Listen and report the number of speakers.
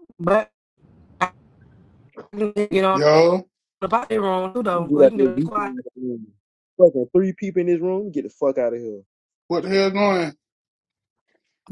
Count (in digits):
3